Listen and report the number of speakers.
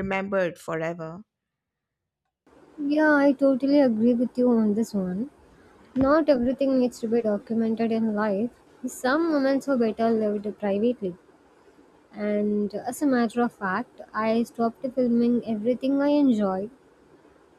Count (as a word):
two